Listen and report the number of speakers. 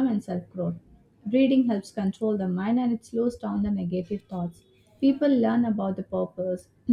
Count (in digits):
1